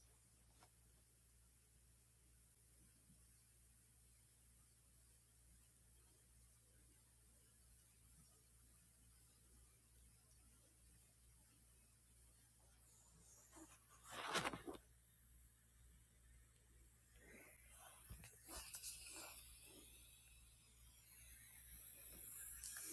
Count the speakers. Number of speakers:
zero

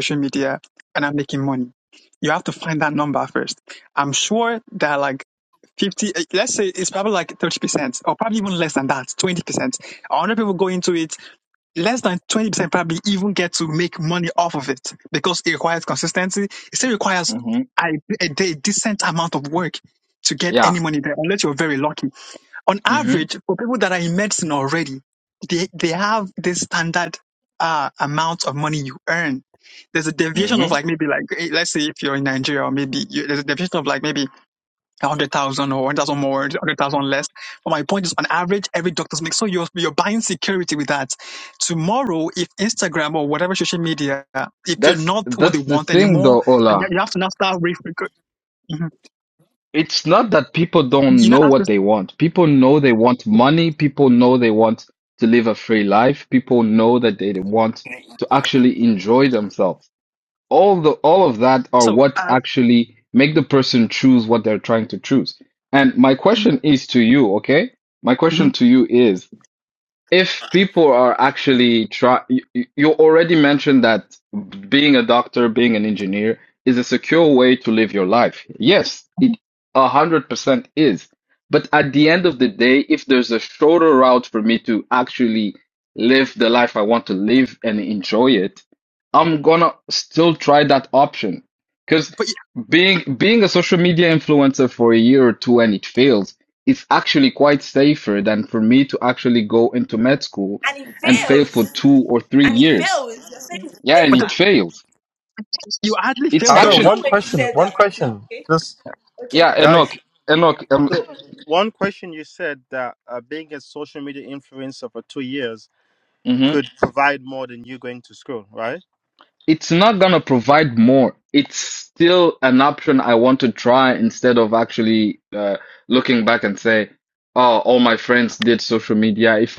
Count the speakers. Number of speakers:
four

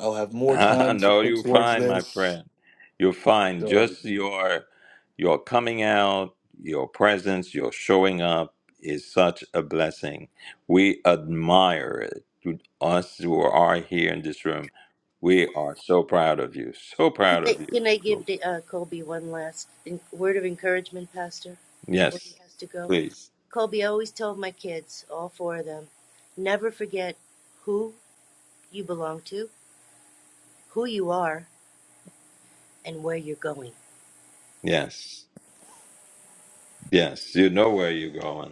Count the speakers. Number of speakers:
three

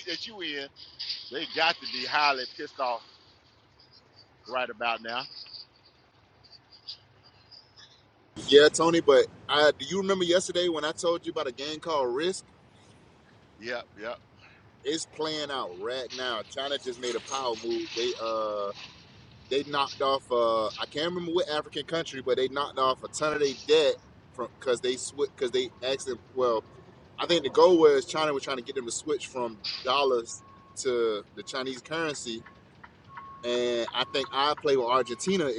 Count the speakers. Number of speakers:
two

